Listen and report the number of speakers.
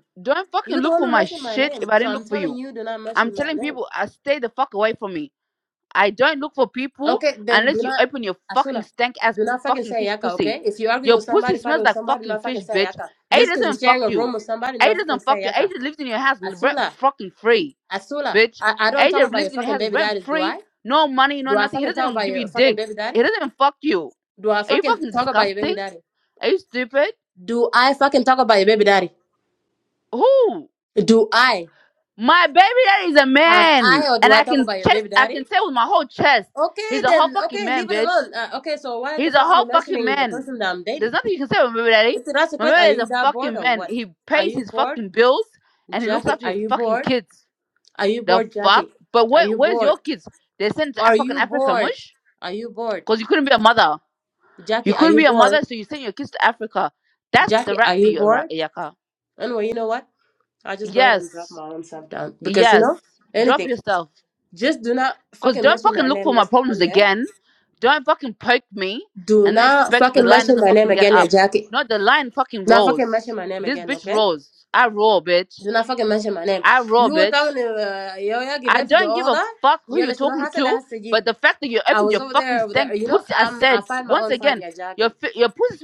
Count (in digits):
2